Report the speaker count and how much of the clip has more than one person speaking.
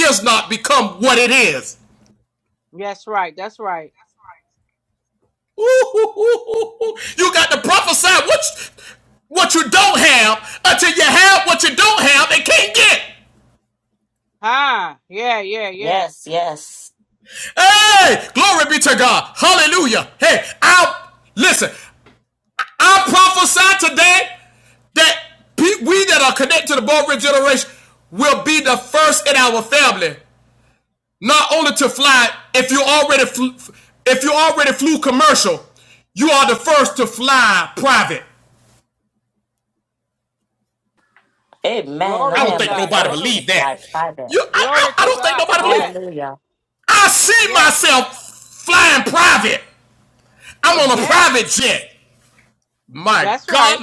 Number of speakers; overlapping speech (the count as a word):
three, about 9%